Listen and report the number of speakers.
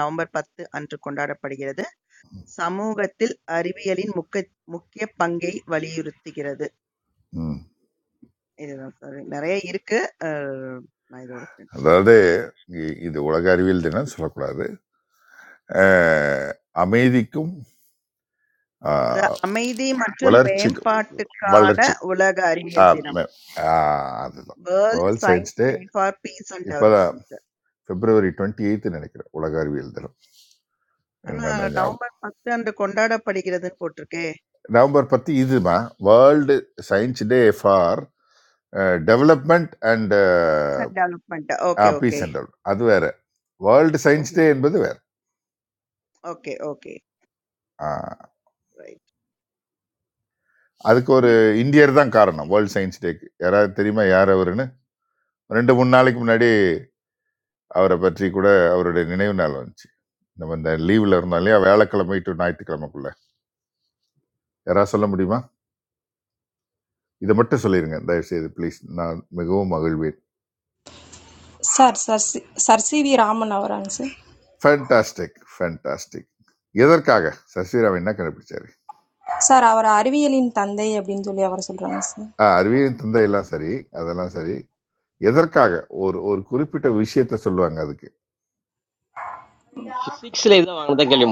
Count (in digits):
4